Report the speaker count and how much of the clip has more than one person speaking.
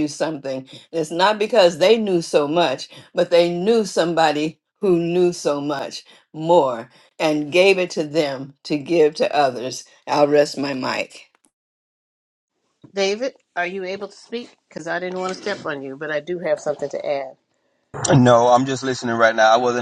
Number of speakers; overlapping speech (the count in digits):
3, no overlap